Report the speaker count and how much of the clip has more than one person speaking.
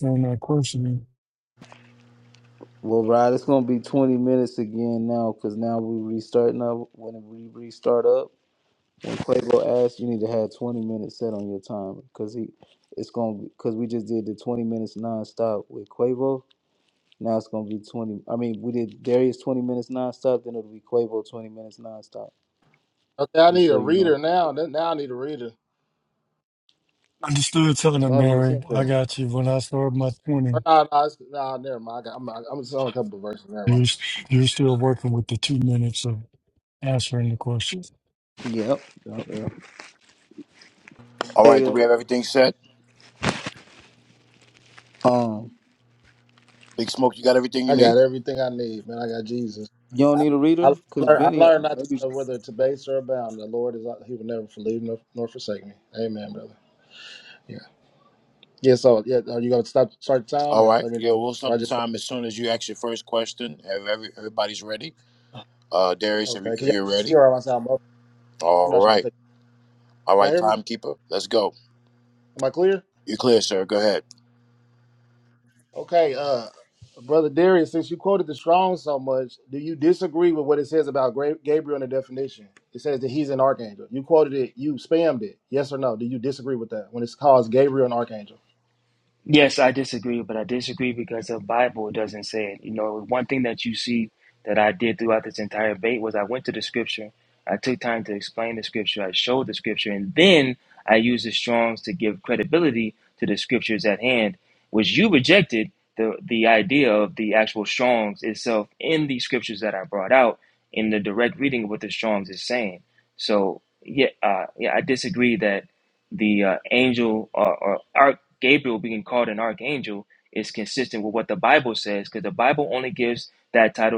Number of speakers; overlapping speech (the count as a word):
five, about 5%